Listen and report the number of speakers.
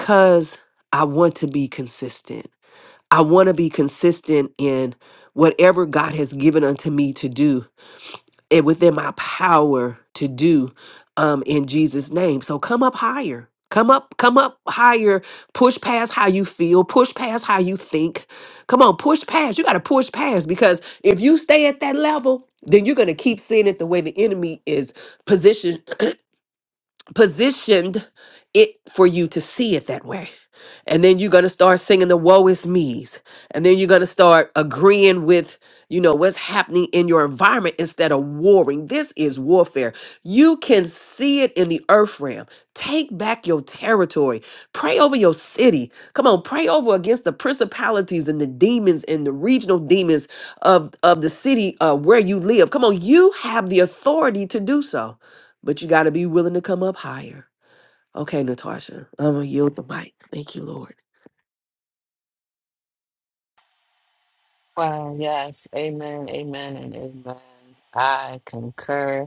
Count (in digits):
2